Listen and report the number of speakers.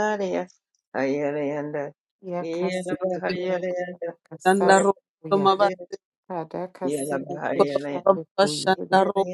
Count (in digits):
3